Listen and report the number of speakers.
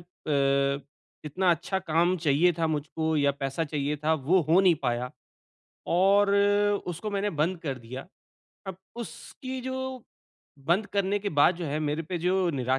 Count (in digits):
1